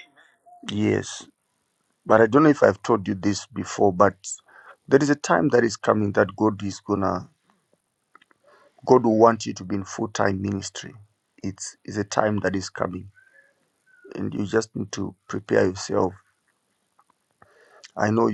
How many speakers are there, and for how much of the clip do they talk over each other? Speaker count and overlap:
1, no overlap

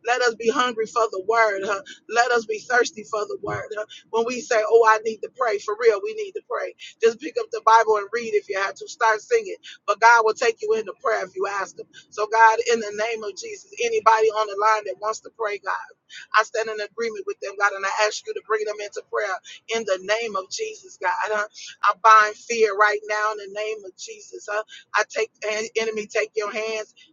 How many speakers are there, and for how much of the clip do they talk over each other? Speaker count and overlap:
1, no overlap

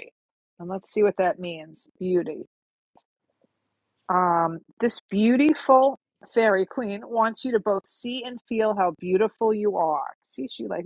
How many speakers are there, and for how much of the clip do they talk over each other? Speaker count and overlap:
1, no overlap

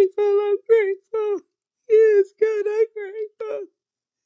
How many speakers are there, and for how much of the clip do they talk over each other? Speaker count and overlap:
1, no overlap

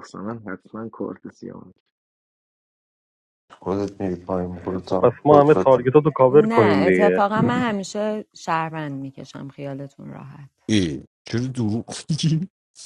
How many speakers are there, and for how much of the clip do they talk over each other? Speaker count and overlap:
5, about 12%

